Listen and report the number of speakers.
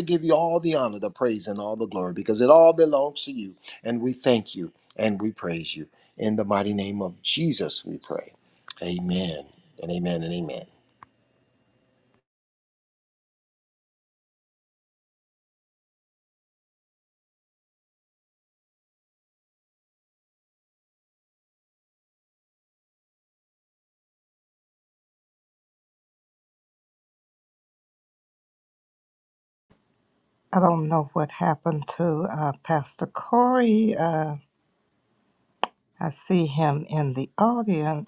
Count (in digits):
2